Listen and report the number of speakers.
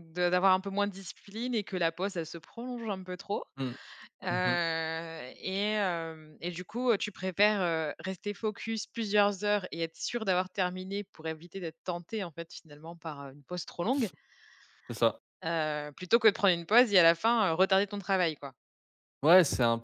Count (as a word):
two